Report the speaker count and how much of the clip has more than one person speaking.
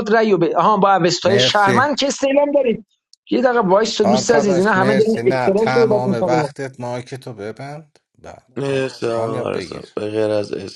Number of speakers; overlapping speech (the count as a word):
three, about 40%